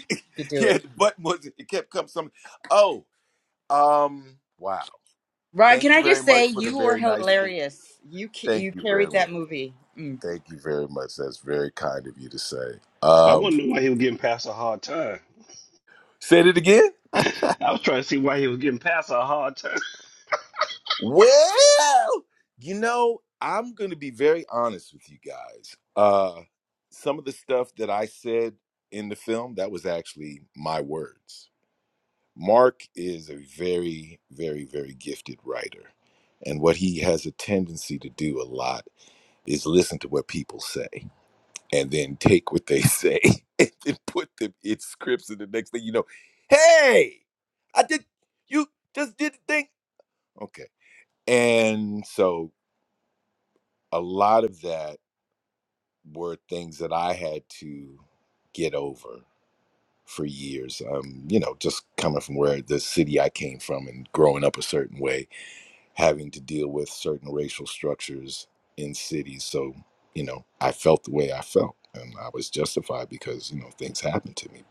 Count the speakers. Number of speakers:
3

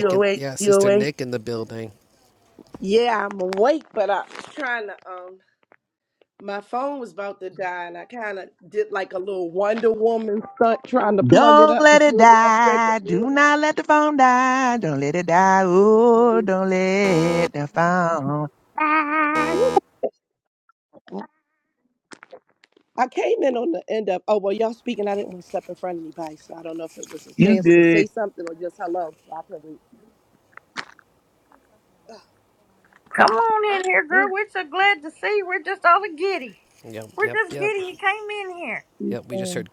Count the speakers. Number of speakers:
4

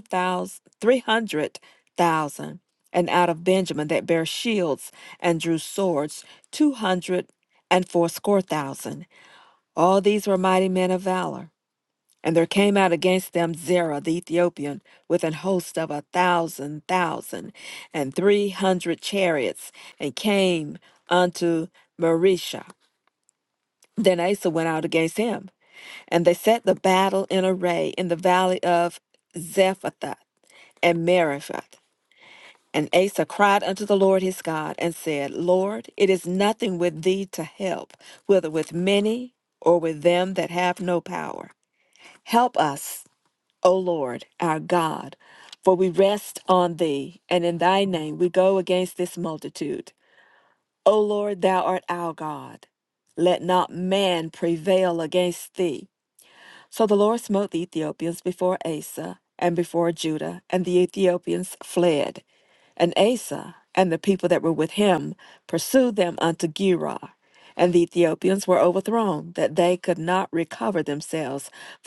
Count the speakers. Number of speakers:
1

